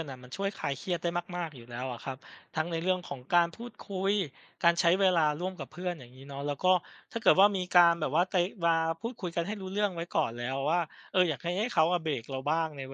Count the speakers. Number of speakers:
one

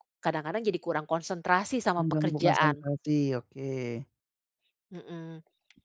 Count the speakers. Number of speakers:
two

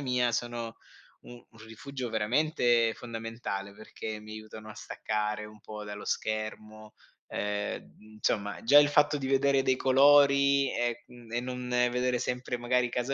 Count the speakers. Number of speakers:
one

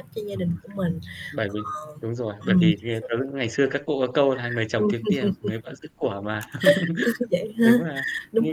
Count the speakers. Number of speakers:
two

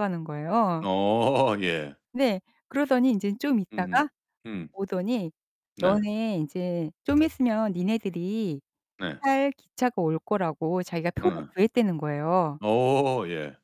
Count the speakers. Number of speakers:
two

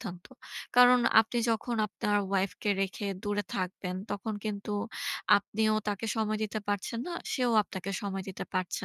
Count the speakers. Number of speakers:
one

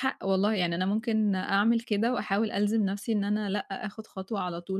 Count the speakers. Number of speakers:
one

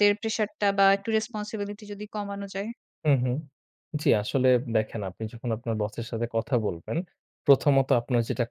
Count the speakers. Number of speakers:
two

